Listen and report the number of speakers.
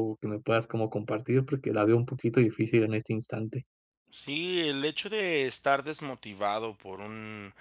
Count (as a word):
two